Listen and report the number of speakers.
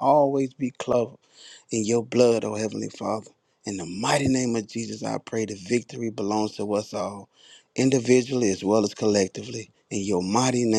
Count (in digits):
1